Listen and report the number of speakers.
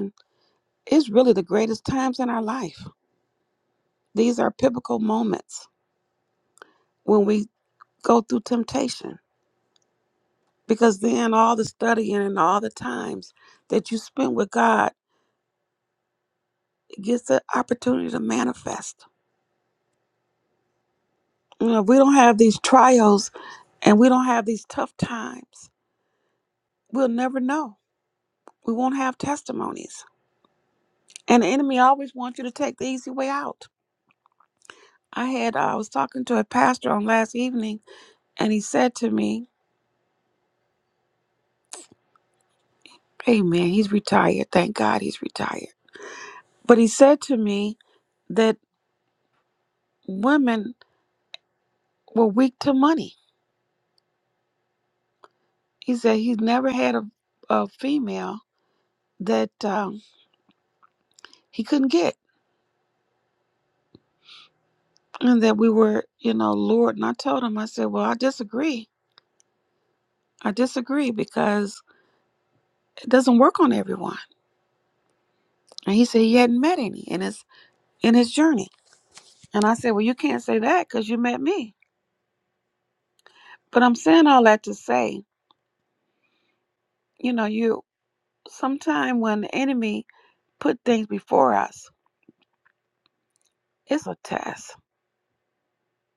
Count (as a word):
one